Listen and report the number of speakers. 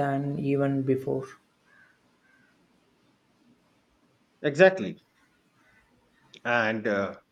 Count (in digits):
2